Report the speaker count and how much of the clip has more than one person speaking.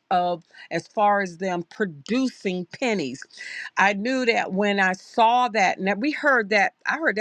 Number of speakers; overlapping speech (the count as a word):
one, no overlap